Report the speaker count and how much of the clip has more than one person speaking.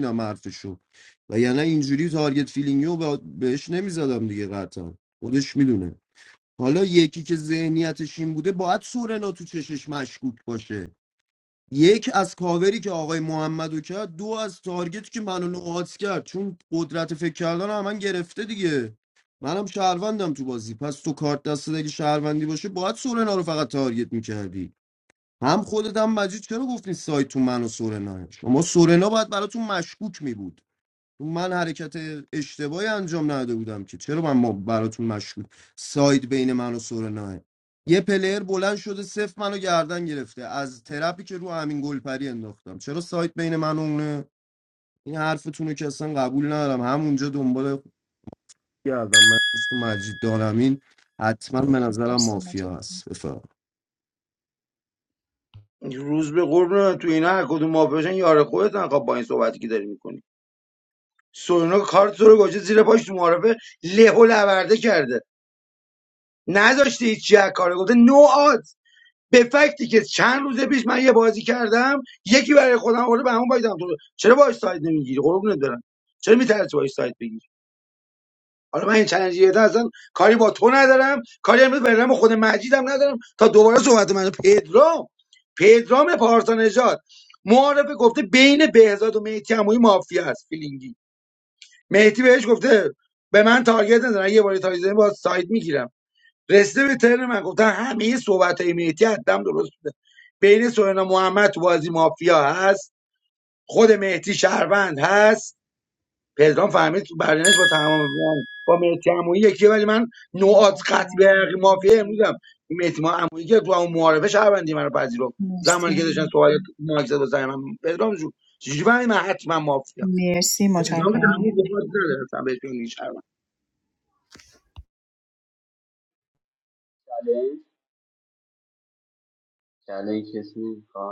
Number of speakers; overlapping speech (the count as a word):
four, about 2%